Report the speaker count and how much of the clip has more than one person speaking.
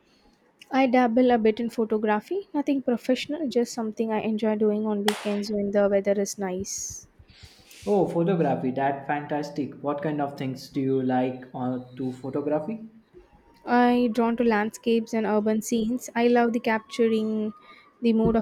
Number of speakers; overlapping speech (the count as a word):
two, no overlap